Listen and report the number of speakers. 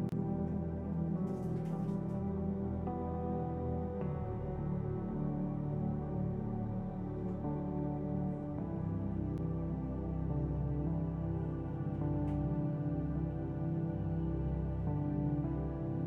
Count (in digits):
0